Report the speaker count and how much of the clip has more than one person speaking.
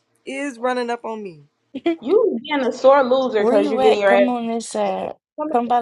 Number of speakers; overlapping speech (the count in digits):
3, about 25%